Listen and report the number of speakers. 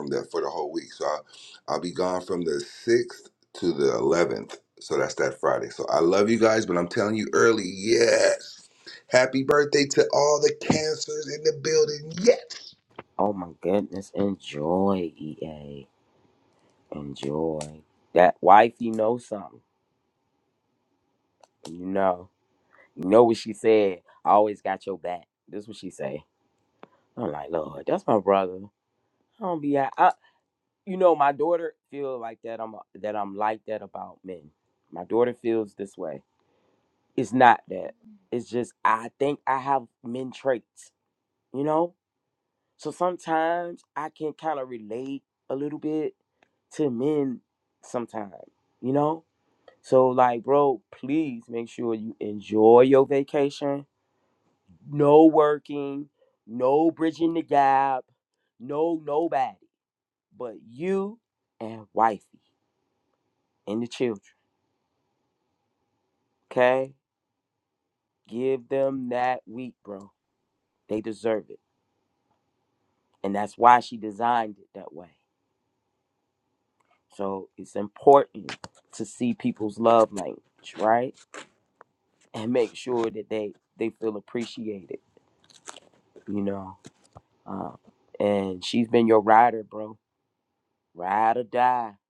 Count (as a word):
two